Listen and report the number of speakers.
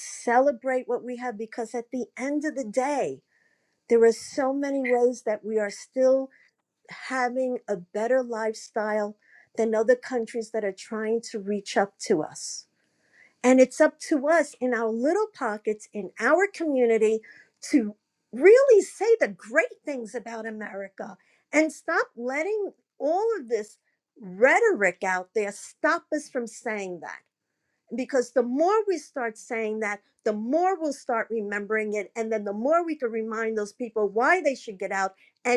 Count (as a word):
one